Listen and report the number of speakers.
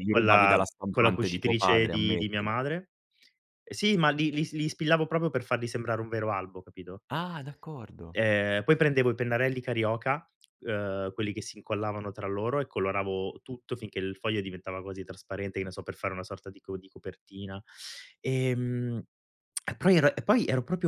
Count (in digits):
2